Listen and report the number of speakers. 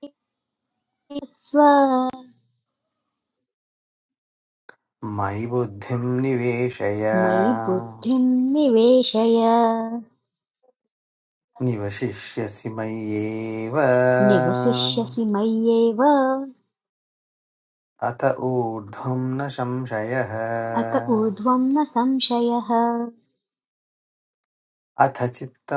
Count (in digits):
2